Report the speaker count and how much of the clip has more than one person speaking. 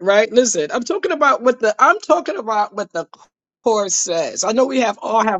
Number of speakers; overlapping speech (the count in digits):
1, no overlap